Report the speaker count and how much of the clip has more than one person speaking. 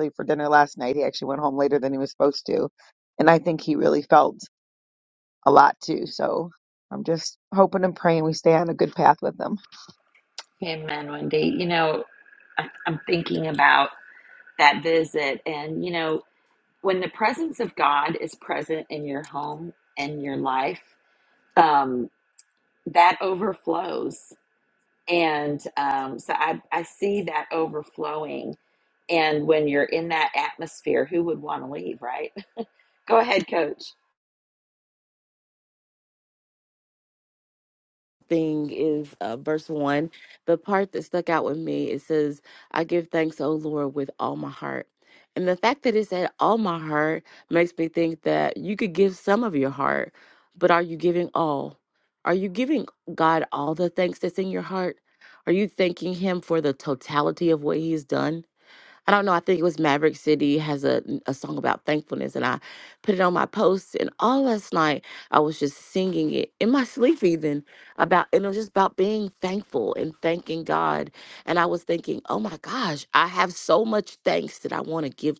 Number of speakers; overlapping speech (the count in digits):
3, no overlap